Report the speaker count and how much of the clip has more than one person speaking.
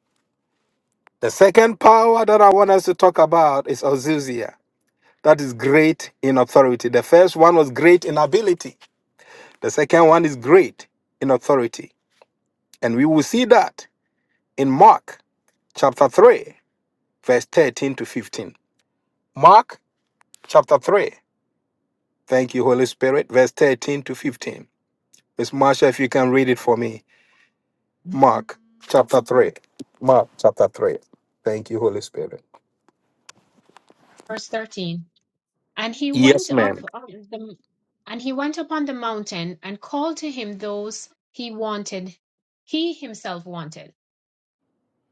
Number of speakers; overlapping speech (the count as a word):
two, about 2%